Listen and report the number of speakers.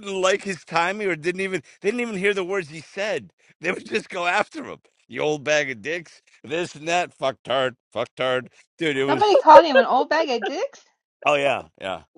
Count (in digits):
2